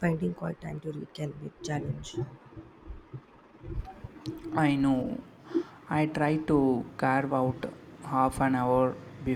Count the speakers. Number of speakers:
2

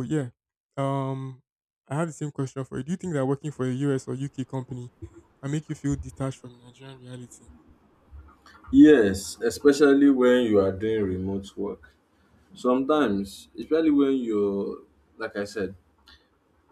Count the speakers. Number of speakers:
2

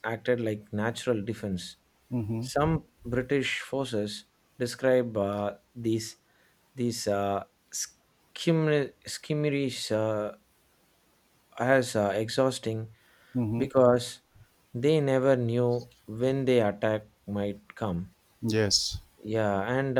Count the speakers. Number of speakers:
2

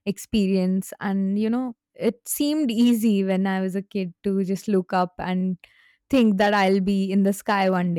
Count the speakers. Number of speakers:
1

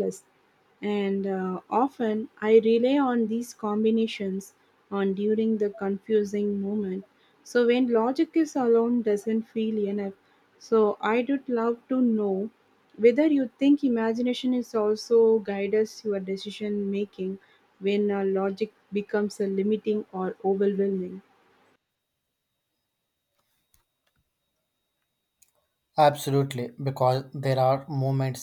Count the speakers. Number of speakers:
2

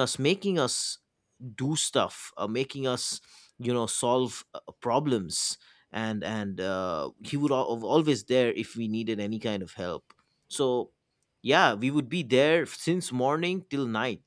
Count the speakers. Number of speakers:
1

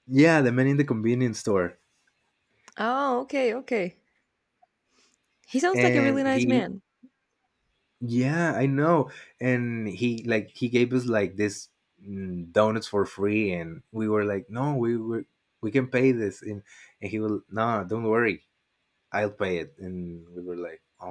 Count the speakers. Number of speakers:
2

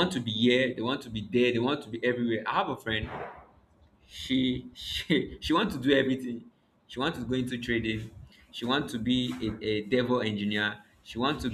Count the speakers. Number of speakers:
1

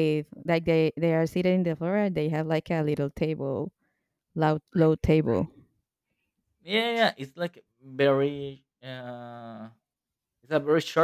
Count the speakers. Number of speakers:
2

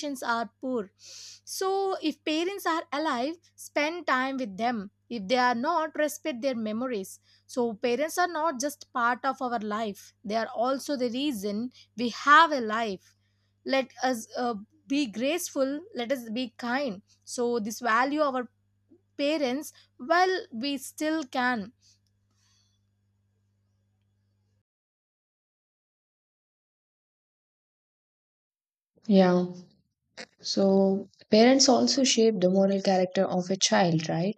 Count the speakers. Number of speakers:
2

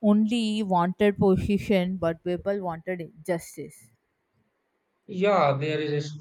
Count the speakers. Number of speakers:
2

